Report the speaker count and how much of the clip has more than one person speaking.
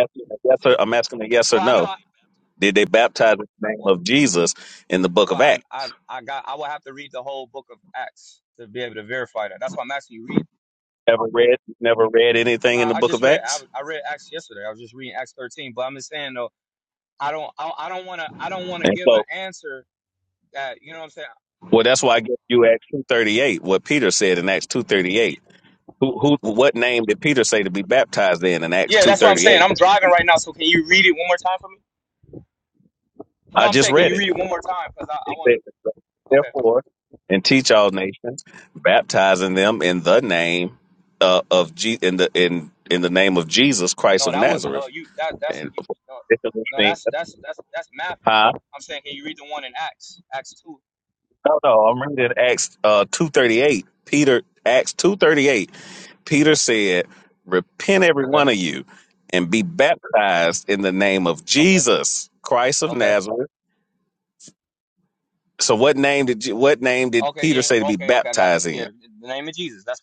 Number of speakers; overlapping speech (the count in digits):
2, about 11%